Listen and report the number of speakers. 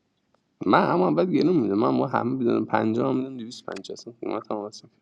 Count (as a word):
one